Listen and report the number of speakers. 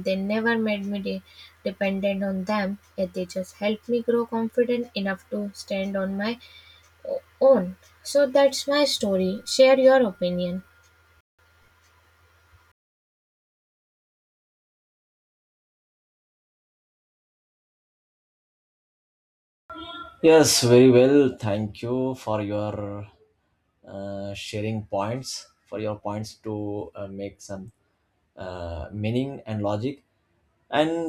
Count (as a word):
two